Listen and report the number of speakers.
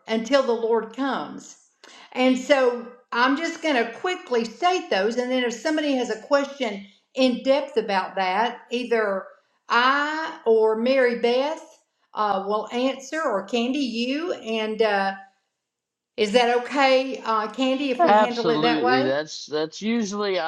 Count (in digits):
2